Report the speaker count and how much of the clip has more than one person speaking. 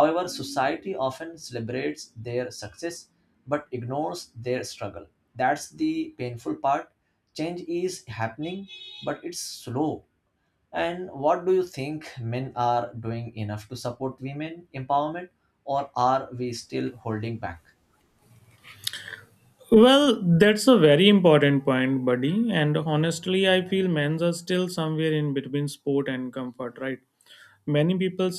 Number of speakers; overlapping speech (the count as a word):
two, no overlap